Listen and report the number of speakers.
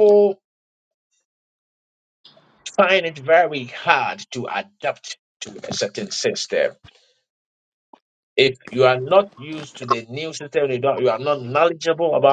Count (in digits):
1